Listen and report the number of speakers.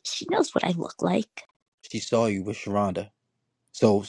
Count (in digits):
2